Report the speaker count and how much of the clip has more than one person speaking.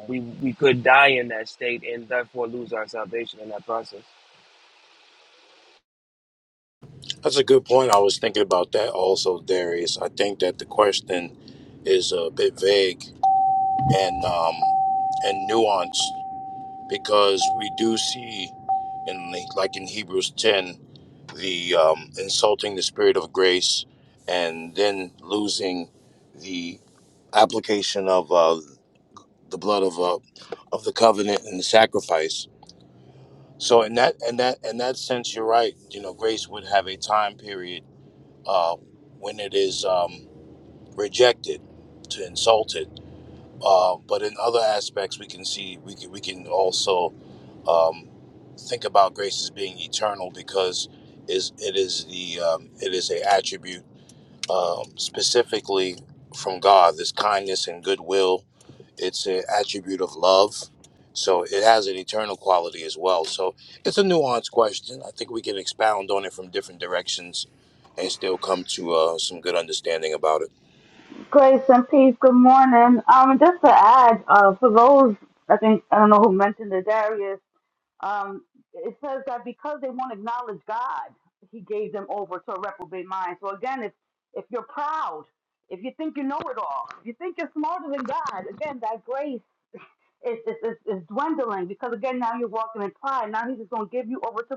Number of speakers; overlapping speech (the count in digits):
3, no overlap